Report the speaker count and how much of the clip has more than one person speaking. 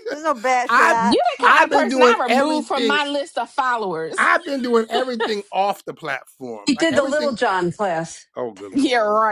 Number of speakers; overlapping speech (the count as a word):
four, about 34%